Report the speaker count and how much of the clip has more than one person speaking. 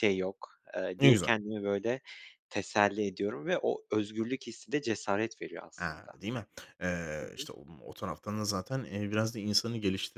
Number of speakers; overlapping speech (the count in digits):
2, about 9%